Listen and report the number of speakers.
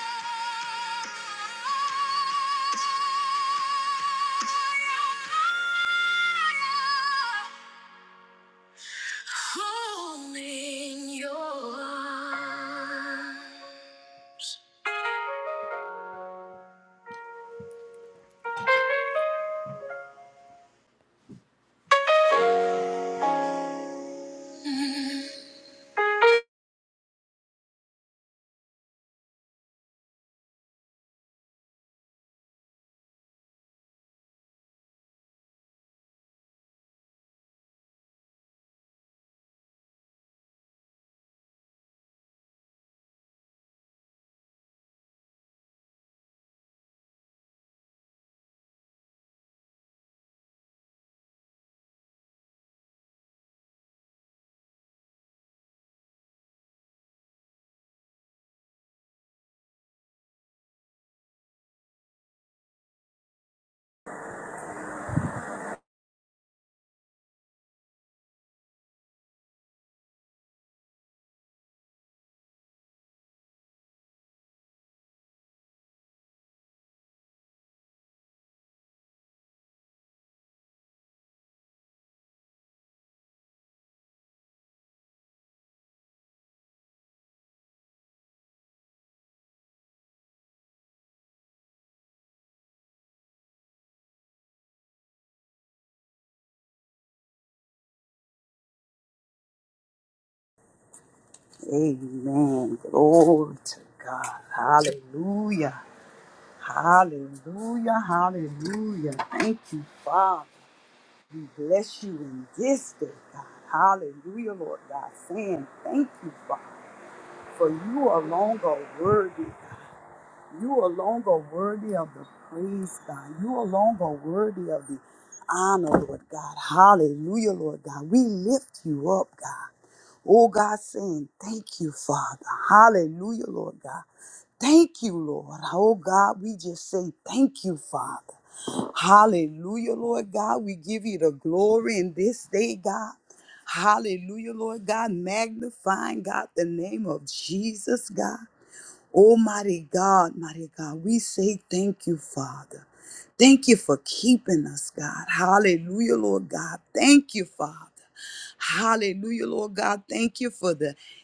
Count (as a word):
two